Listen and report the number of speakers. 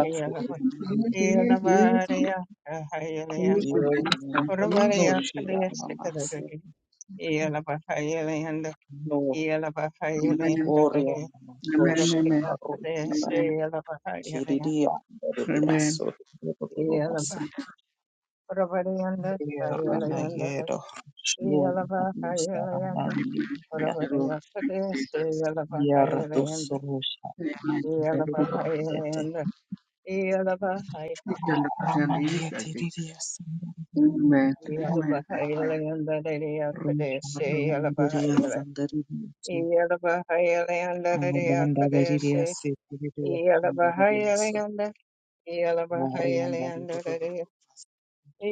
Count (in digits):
3